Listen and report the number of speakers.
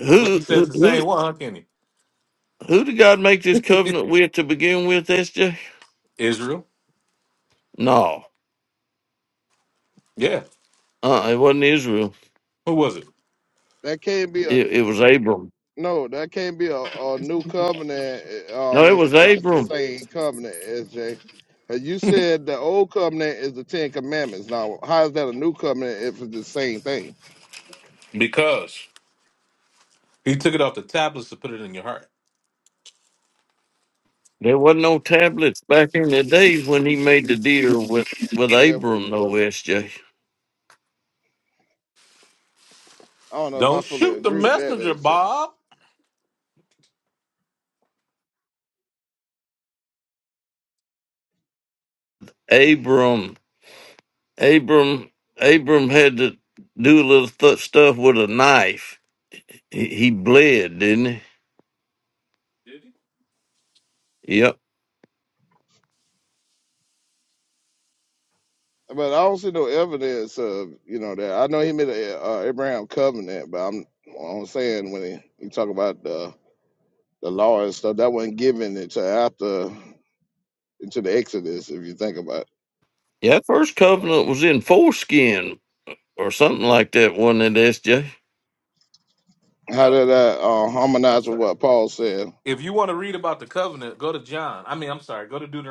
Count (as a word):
three